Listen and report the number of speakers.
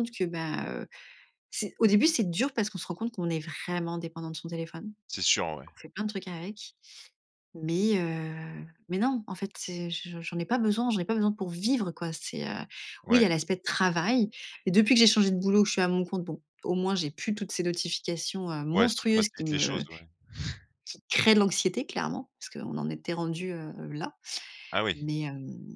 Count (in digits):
2